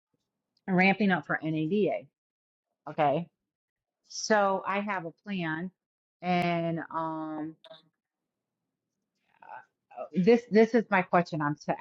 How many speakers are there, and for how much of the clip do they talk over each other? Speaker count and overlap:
1, no overlap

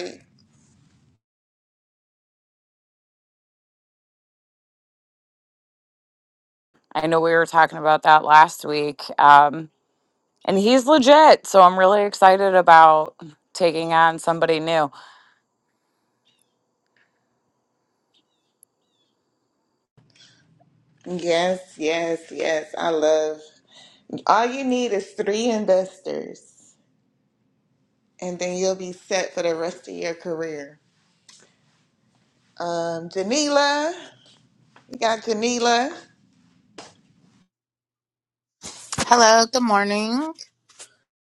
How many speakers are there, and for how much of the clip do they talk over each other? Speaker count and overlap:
3, no overlap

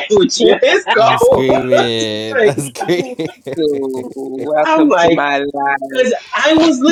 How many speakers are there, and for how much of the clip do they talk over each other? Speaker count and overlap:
3, about 25%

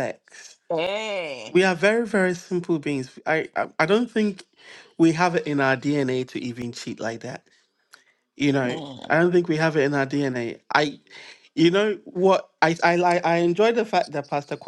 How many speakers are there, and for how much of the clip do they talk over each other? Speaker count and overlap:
2, about 4%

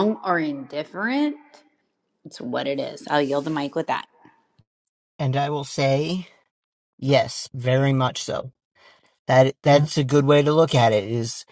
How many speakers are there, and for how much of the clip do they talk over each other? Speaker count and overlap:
2, no overlap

